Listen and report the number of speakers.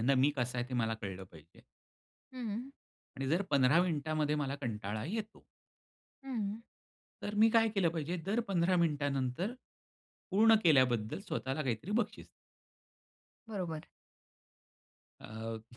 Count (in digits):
2